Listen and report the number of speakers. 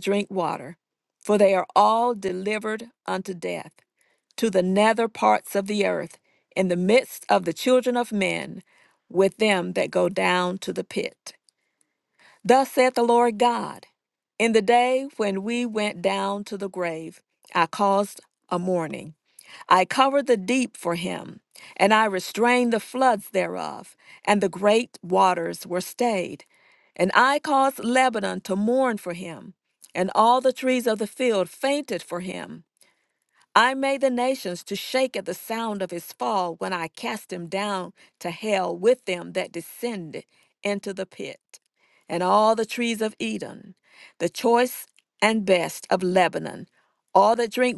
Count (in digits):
1